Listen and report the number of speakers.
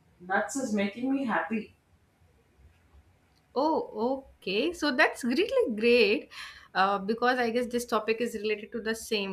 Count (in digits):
2